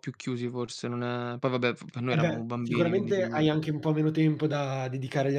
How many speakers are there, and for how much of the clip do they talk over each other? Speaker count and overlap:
2, about 25%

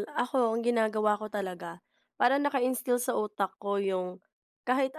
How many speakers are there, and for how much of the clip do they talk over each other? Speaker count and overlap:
1, no overlap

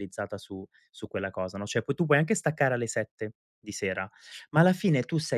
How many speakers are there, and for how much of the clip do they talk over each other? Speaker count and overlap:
1, no overlap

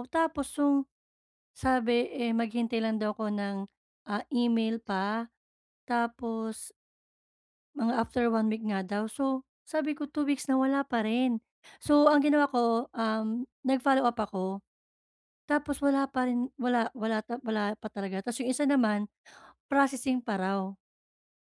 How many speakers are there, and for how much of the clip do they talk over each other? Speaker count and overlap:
1, no overlap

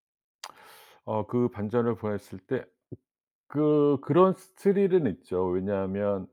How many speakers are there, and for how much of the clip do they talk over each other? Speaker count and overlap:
1, no overlap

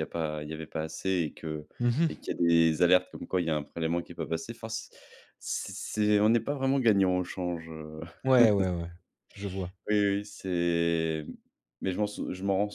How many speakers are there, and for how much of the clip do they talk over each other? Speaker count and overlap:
2, under 1%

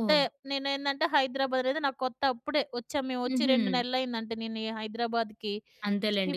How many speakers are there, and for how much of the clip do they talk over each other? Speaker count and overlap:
2, about 14%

